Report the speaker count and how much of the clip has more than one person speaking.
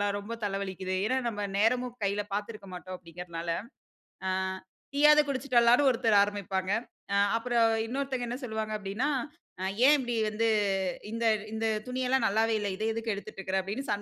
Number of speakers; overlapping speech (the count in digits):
1, no overlap